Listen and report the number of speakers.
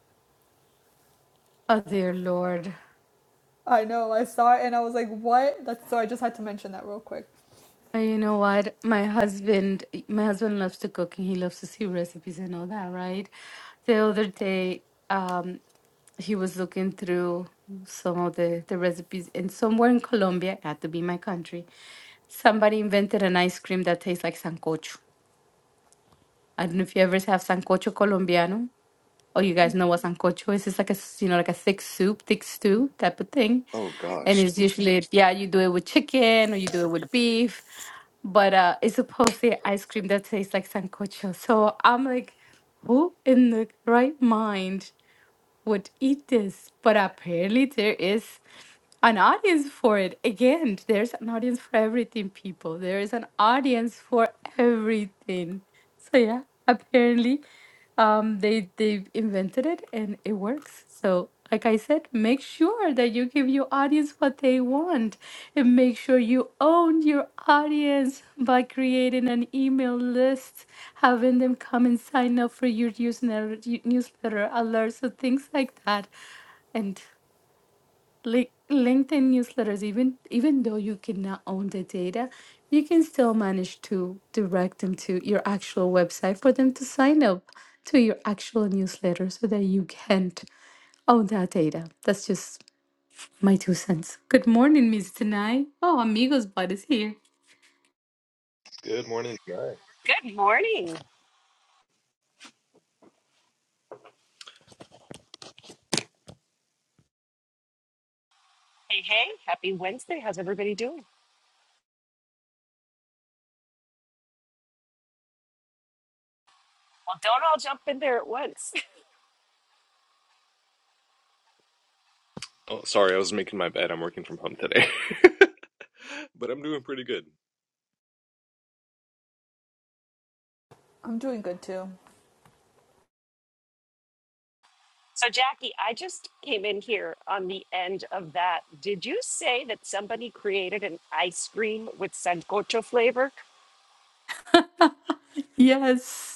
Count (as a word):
four